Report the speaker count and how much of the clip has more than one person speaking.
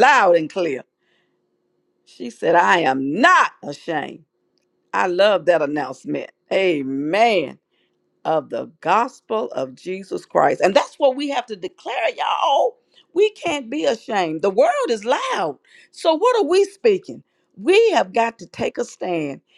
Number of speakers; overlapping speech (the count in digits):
1, no overlap